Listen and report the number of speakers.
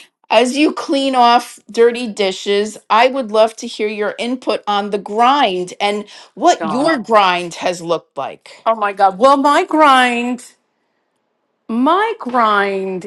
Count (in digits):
2